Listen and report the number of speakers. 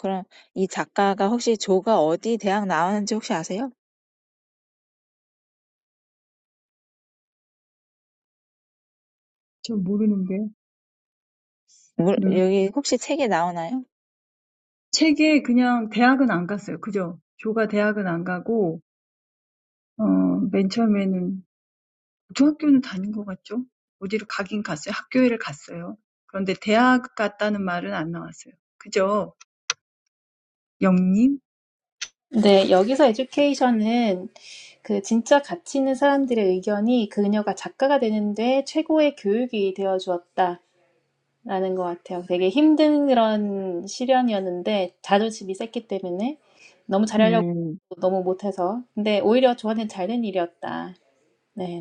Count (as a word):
three